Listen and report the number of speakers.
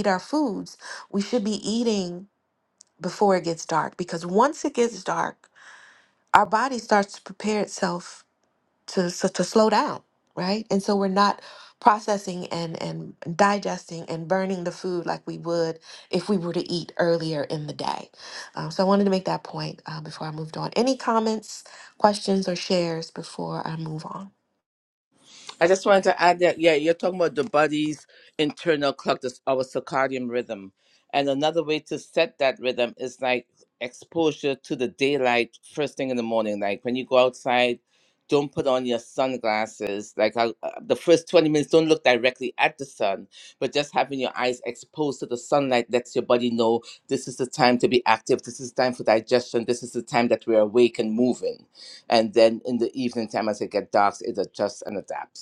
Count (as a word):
two